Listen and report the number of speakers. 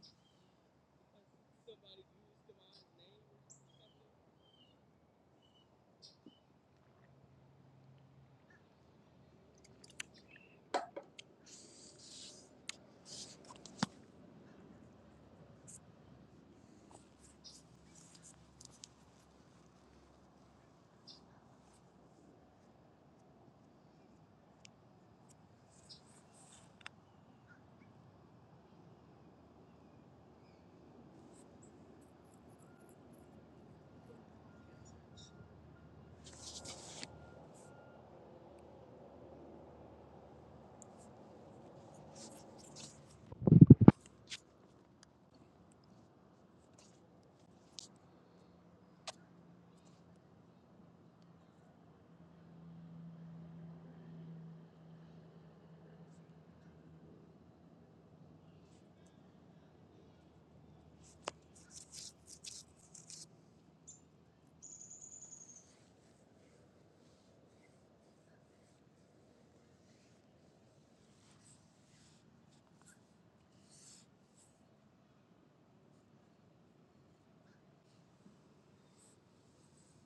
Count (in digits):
0